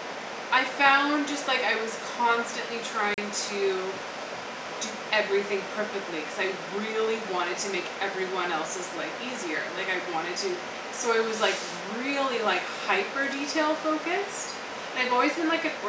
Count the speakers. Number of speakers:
1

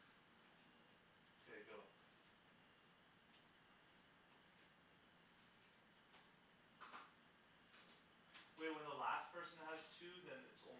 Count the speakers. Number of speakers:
1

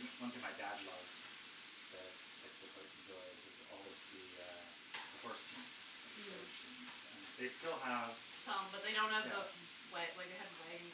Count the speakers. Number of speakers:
2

